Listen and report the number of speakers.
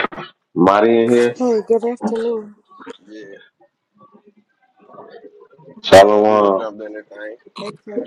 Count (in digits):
3